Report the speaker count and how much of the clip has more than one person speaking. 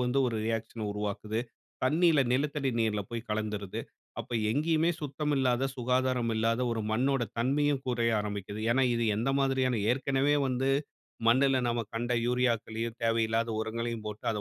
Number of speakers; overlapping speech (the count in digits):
1, no overlap